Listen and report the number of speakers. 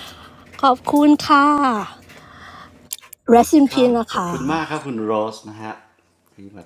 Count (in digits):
2